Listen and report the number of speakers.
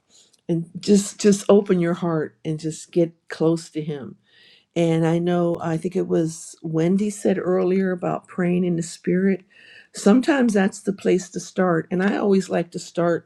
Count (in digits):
1